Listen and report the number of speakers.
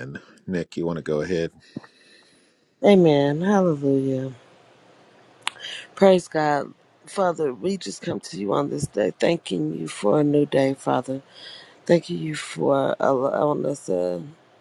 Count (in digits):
2